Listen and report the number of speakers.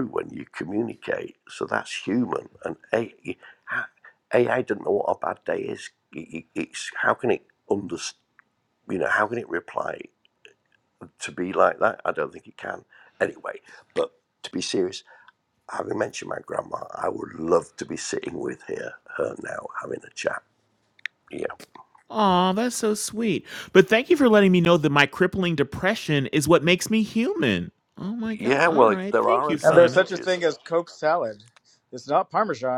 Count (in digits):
3